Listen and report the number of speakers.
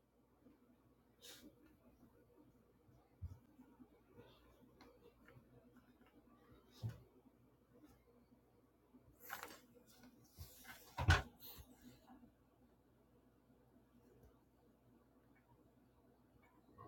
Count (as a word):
zero